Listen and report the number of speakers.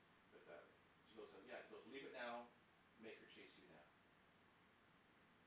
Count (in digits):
1